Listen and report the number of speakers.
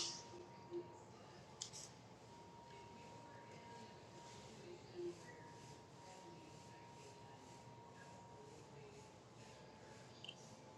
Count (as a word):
zero